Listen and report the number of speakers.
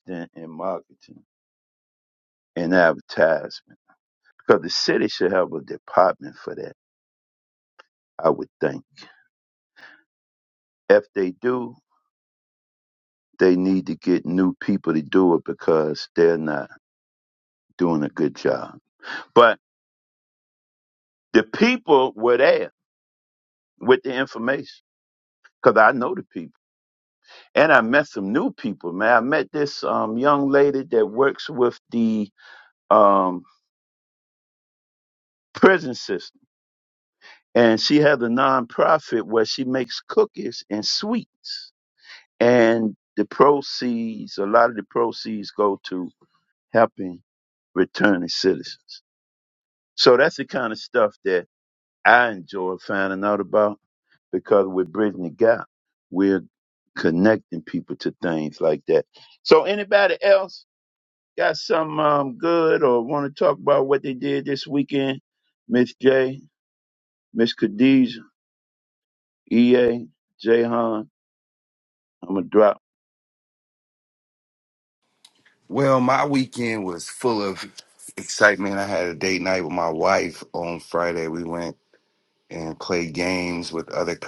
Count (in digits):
2